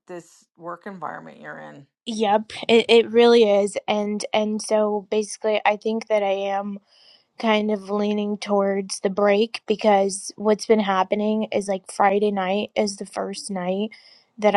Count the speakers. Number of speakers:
2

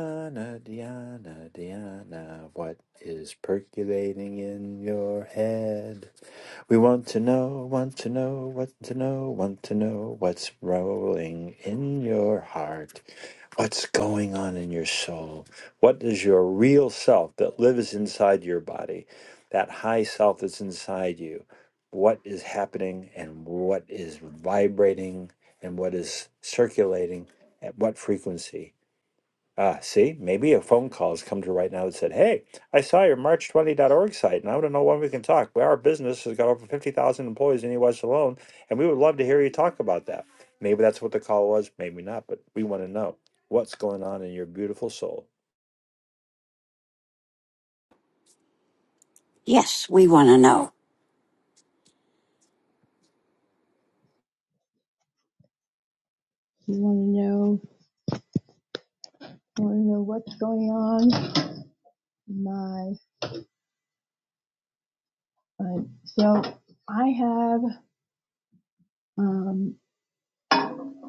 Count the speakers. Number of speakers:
3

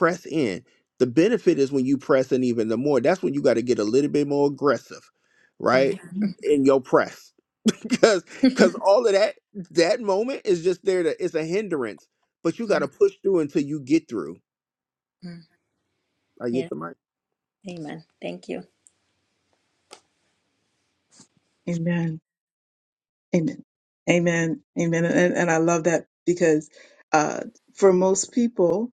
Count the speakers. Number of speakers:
3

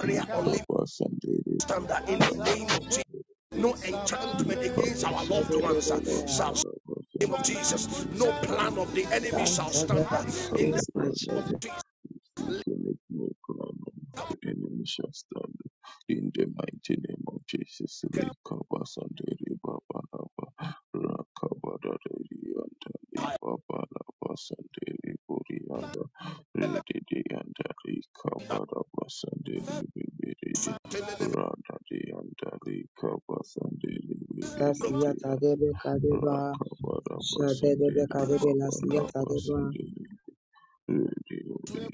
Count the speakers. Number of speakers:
3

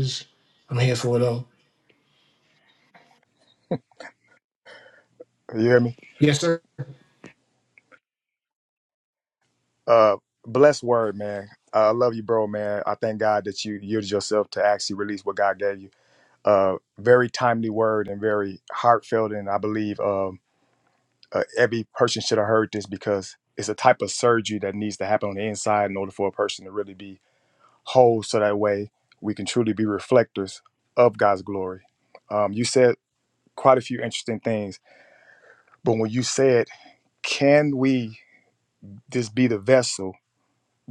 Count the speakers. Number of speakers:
2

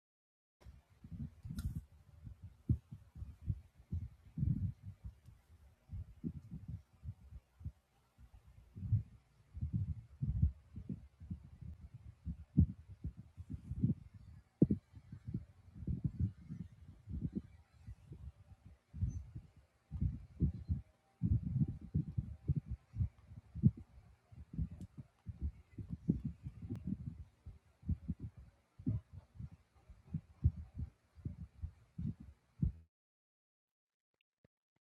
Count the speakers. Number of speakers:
0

